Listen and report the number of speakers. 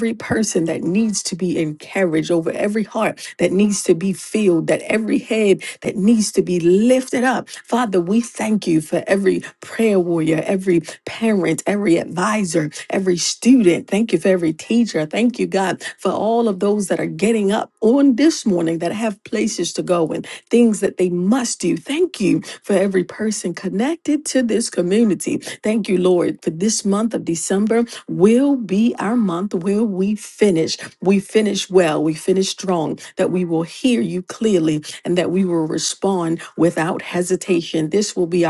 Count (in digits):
1